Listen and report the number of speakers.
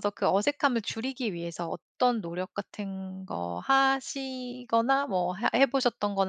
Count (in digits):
1